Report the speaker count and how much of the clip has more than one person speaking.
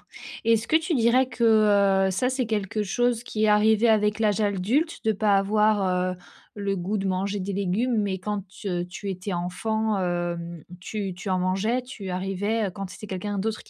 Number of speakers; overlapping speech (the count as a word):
one, no overlap